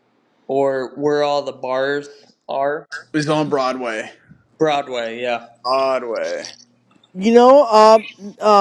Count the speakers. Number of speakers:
three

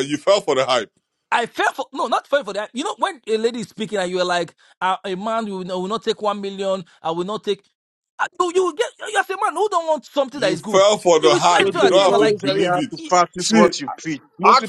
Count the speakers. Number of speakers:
three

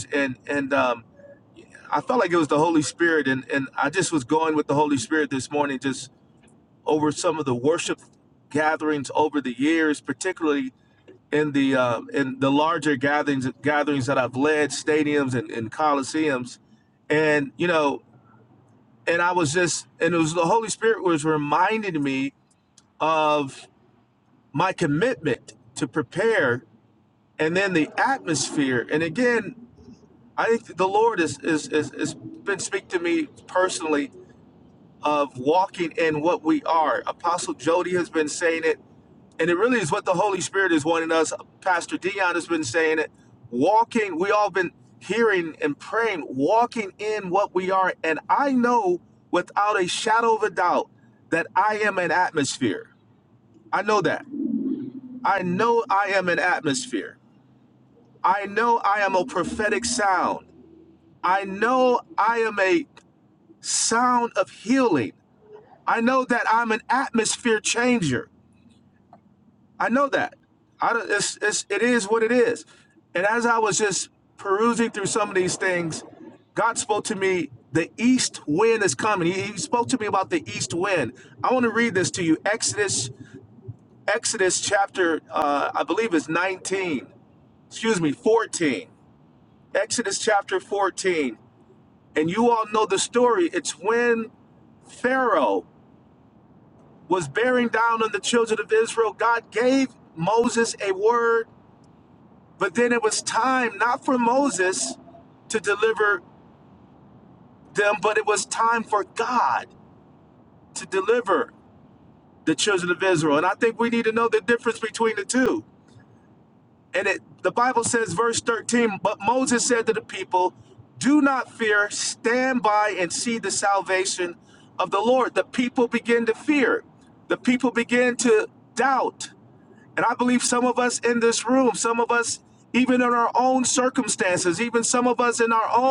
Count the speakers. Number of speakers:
one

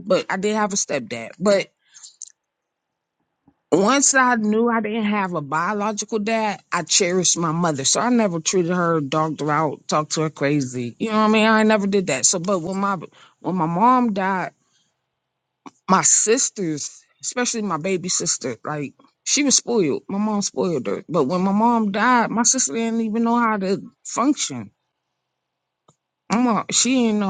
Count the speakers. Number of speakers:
one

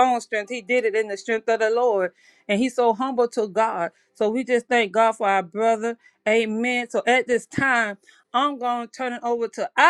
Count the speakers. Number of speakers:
one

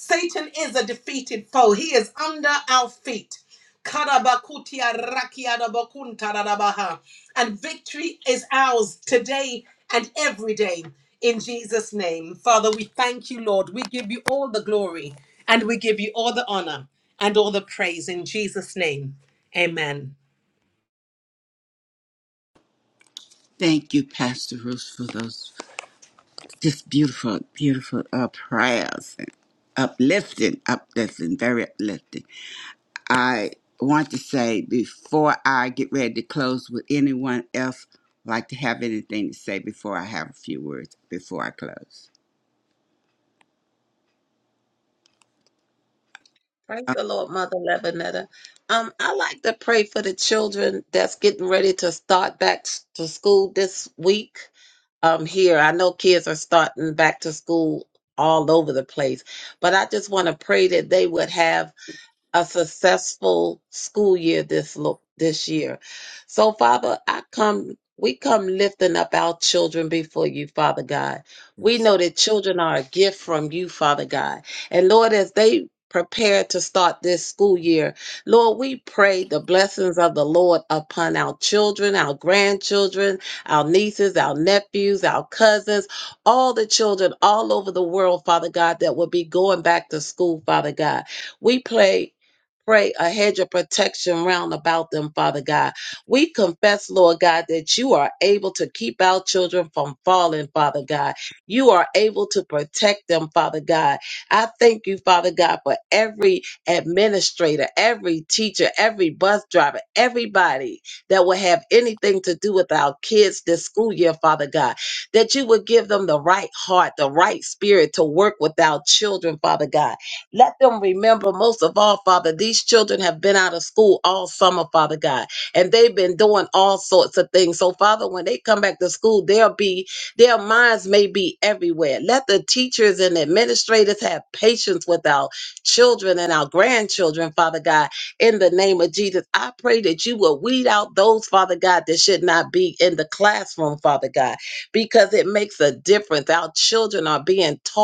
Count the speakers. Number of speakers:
three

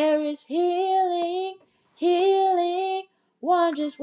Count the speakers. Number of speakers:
one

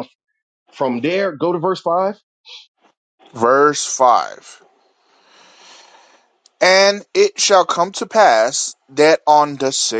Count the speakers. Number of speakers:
two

